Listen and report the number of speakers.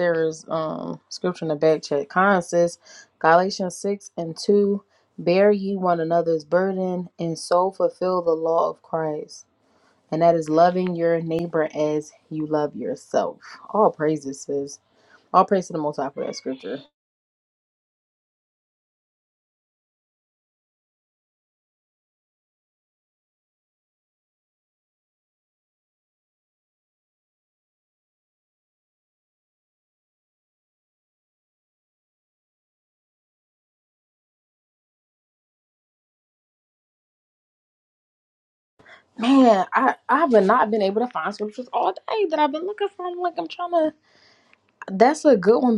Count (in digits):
1